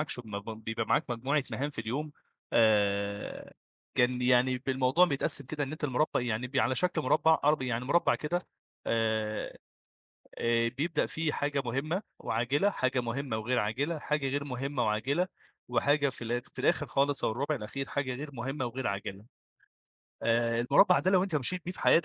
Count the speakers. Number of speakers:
one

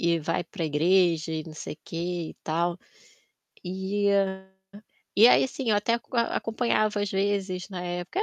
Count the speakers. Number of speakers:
one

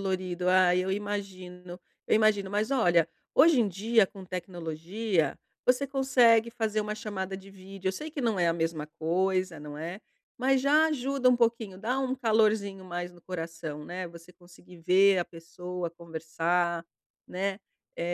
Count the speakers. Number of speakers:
one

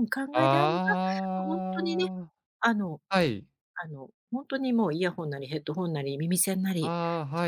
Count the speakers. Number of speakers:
two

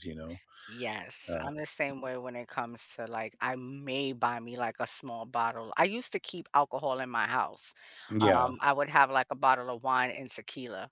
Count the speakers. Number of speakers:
two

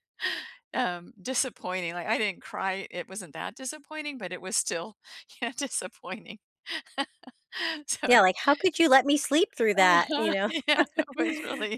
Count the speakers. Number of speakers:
two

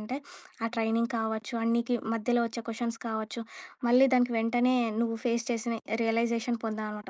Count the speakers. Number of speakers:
one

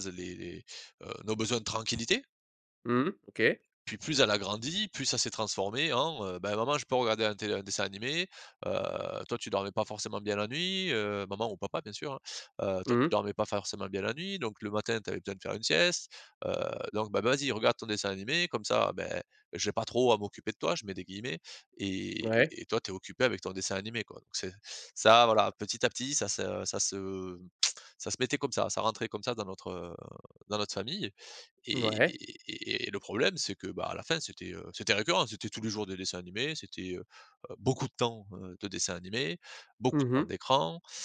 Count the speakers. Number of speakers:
two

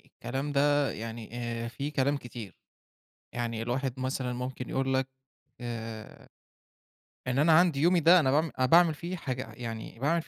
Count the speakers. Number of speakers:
one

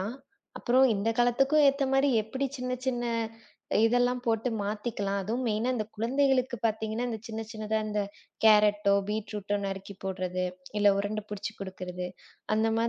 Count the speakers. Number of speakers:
one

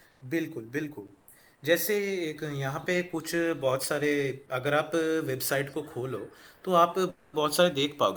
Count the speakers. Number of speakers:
one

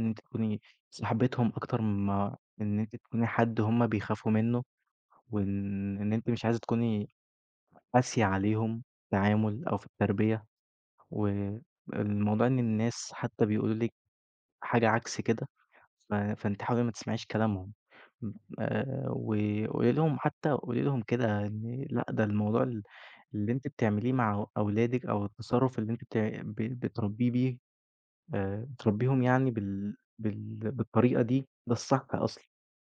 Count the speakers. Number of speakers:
one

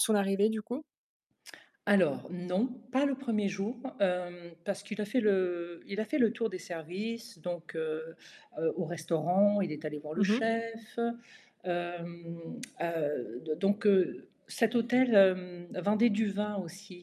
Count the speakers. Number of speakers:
two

